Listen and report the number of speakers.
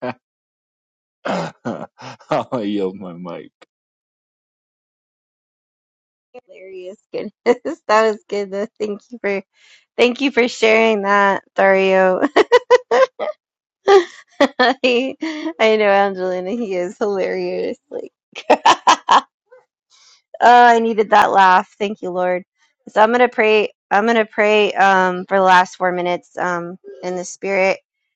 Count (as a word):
two